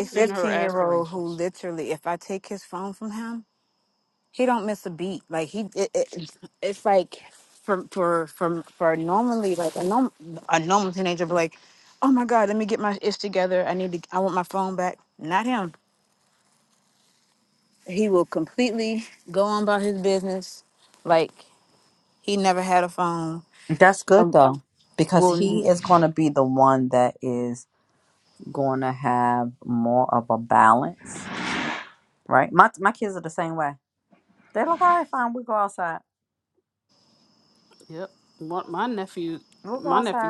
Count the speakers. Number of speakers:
three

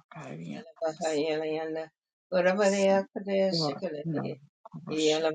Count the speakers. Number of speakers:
two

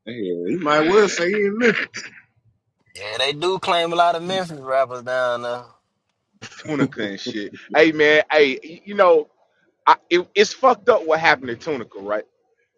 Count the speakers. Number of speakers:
three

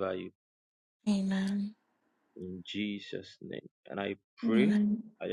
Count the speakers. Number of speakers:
two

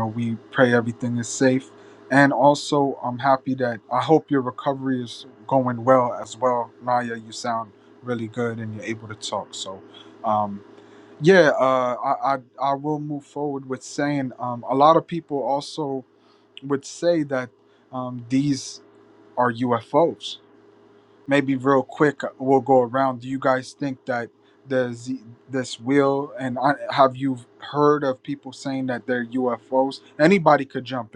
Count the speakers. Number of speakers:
one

